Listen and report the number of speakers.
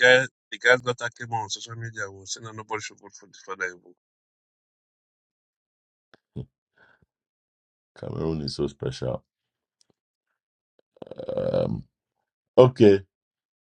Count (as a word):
two